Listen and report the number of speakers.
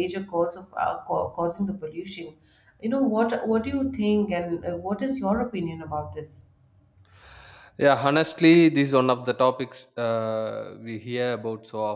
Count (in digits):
2